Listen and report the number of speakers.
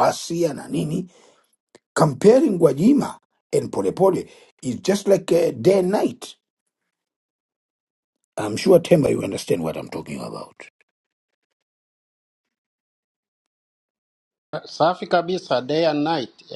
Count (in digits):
2